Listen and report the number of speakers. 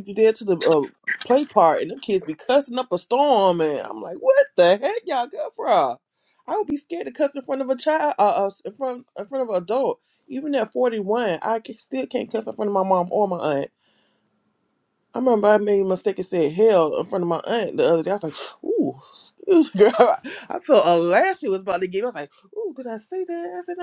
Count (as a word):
one